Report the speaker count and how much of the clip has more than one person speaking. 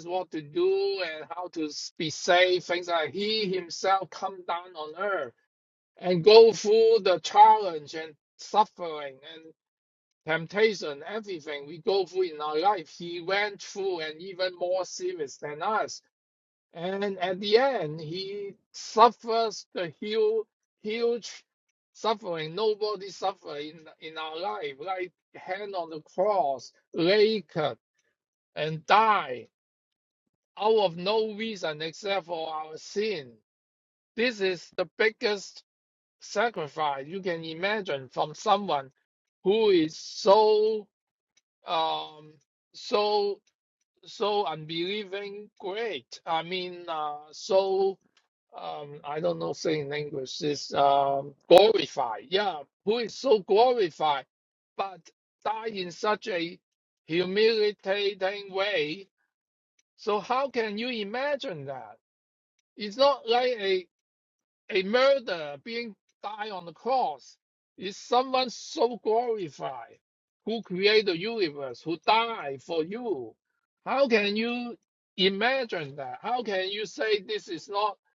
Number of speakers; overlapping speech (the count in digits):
1, no overlap